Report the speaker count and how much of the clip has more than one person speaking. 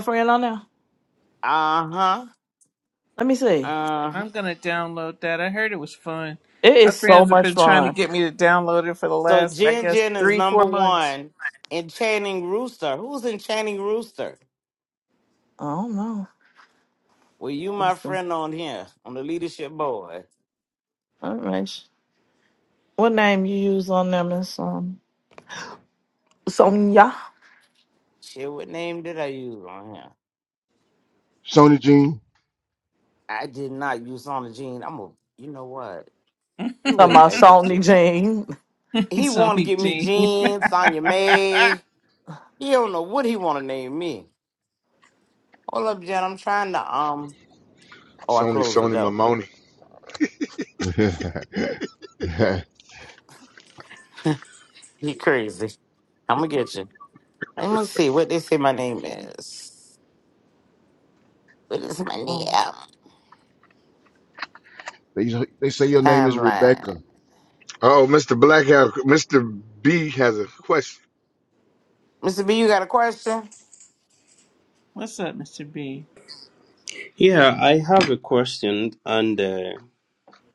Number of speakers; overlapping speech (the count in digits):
6, about 9%